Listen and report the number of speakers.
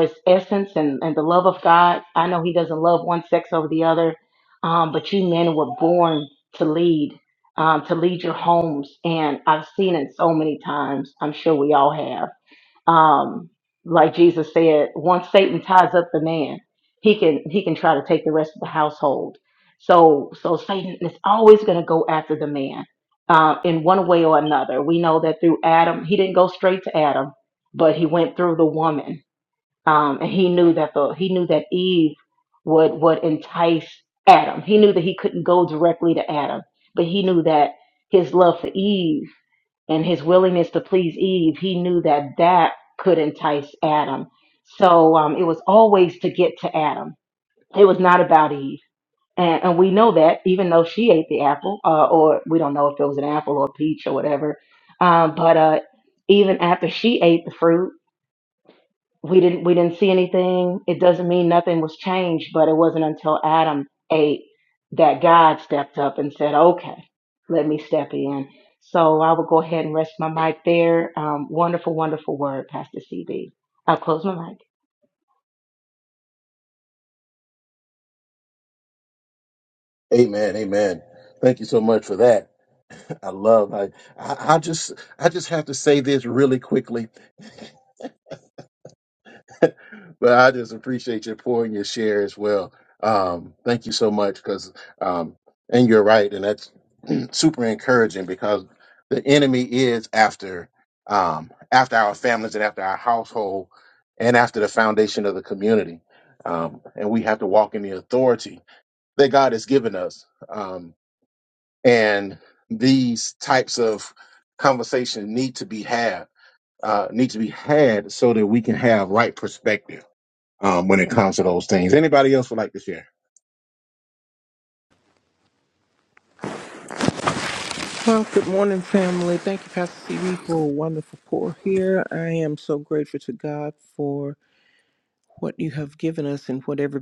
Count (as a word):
three